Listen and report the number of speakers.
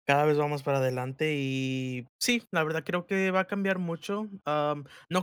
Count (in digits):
1